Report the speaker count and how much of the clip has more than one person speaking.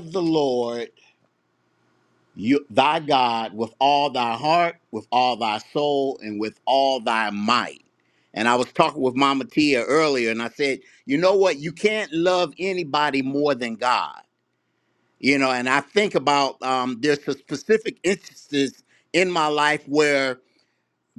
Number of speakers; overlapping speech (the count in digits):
1, no overlap